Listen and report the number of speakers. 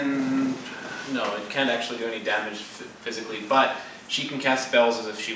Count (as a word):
one